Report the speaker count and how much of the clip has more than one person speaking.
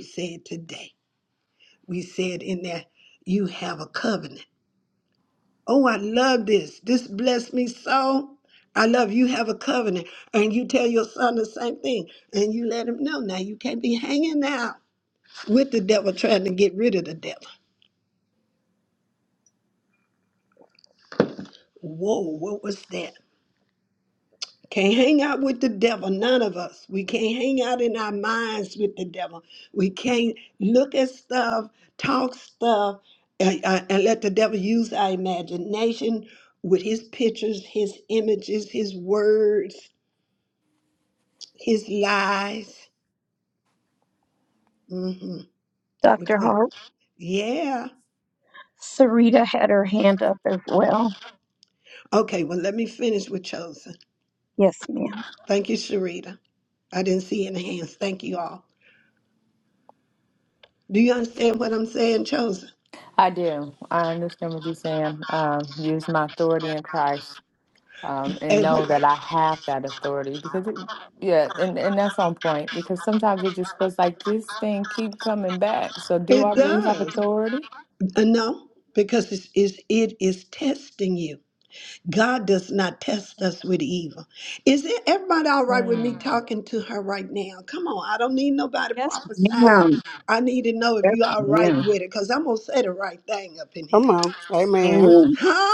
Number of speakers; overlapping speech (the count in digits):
4, about 5%